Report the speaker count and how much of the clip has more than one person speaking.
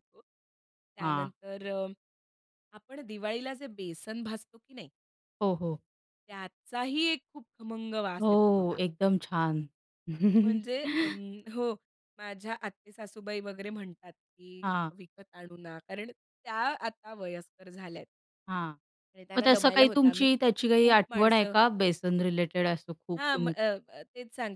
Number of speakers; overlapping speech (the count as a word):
two, about 13%